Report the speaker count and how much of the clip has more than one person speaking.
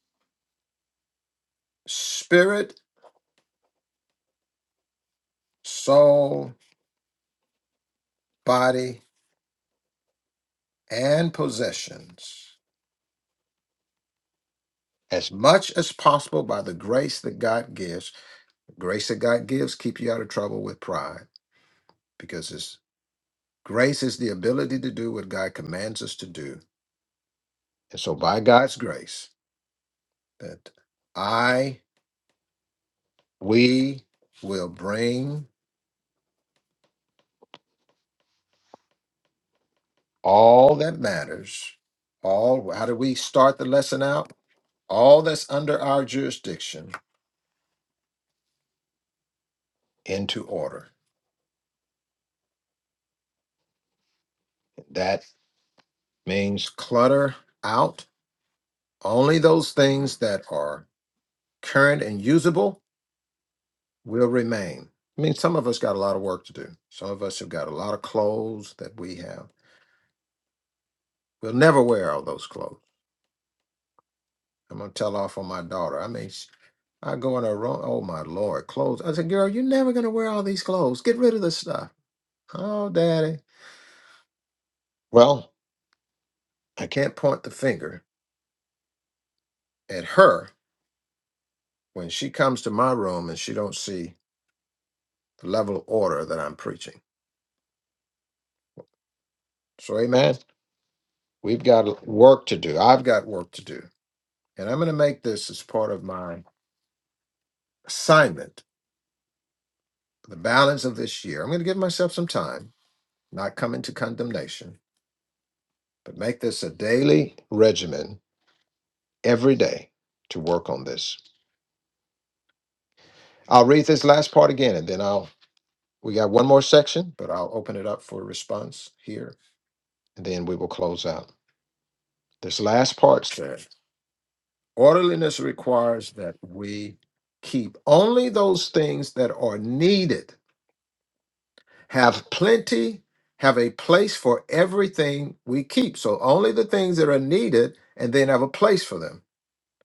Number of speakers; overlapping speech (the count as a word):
one, no overlap